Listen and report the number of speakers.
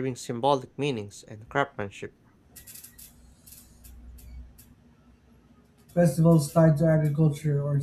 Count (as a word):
two